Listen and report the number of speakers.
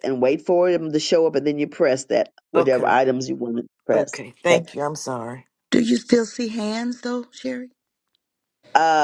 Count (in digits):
3